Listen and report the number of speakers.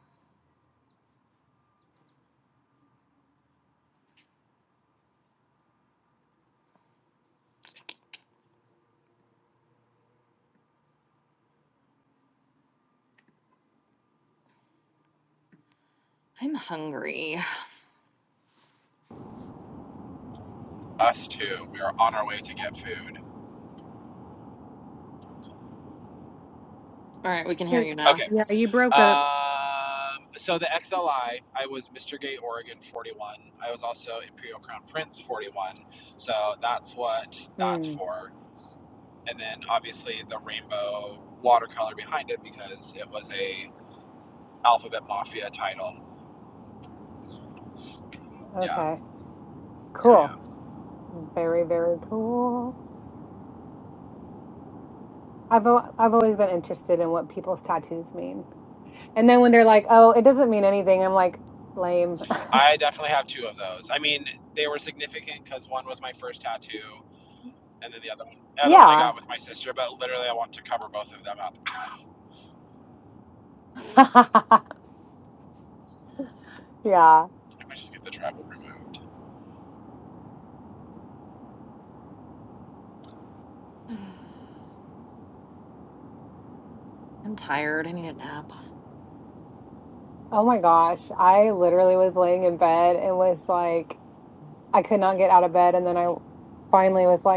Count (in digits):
3